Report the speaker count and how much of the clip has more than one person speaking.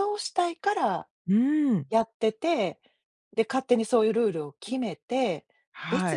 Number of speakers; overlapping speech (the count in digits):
2, about 5%